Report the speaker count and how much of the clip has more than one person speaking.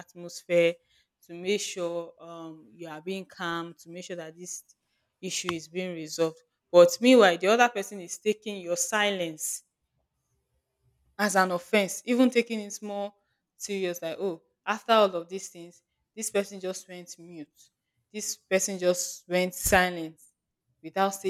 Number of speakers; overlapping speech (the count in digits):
1, no overlap